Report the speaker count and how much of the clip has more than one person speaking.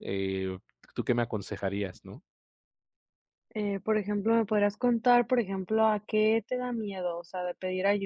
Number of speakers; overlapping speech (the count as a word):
two, no overlap